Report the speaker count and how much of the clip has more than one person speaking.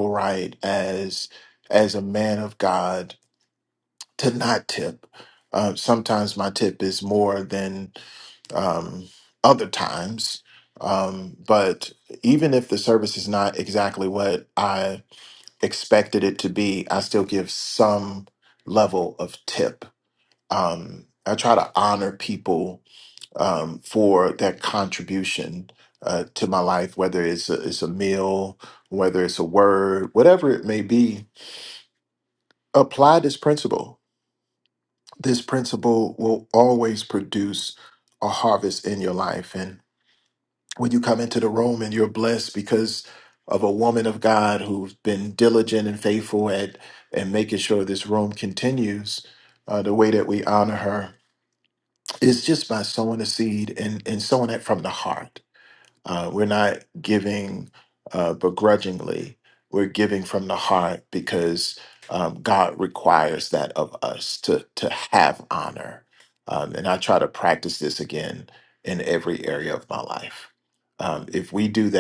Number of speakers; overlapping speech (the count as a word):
one, no overlap